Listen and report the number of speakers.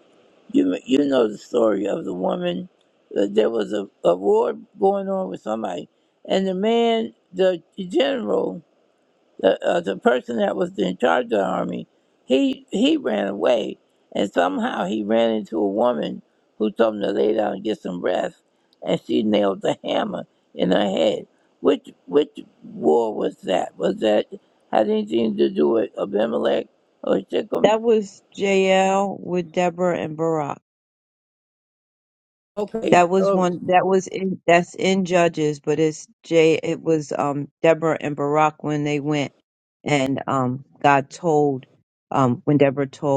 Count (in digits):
2